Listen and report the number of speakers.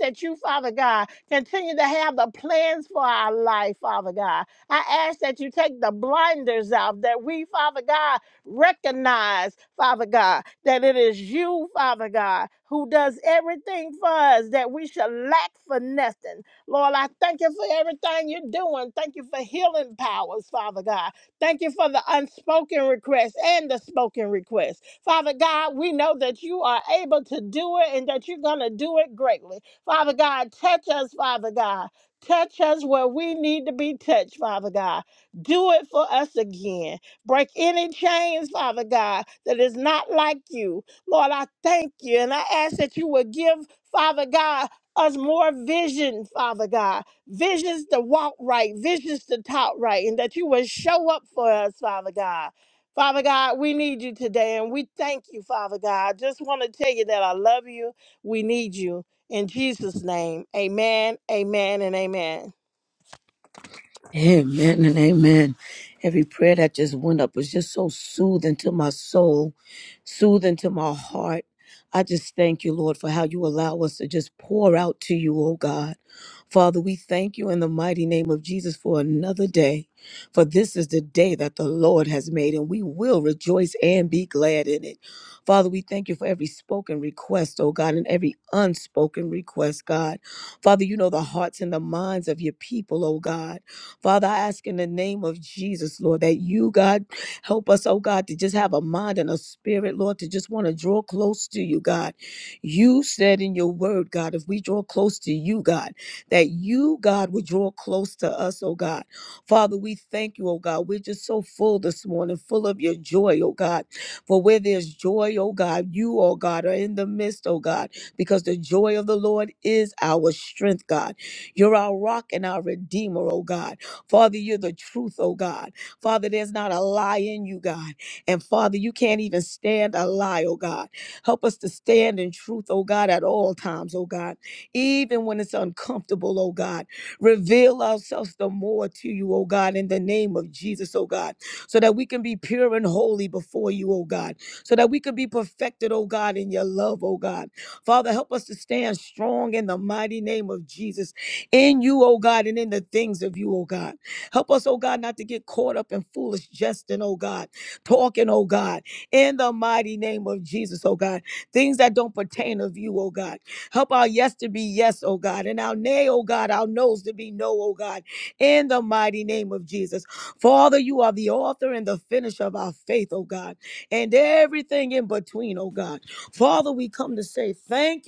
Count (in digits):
2